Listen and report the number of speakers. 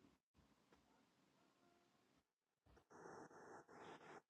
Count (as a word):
zero